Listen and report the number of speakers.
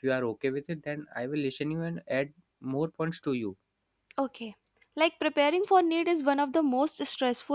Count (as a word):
two